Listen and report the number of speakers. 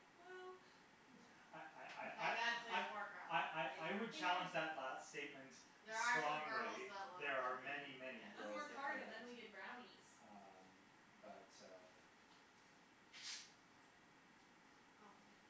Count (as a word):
three